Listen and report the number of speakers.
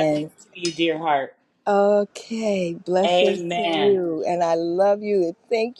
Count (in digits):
2